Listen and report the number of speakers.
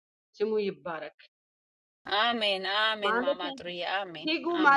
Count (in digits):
2